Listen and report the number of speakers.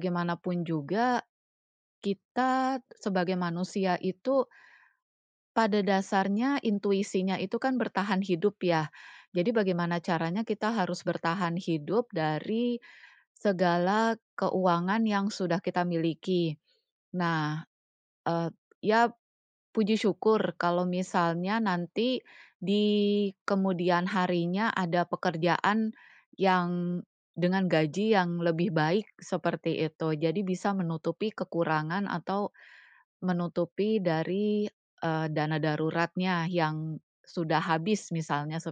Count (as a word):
one